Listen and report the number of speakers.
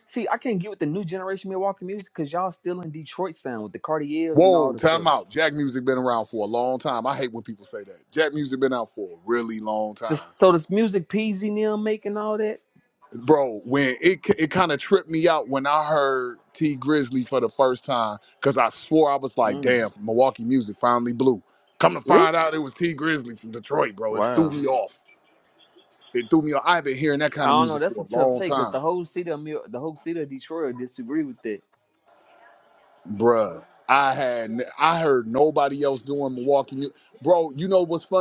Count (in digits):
2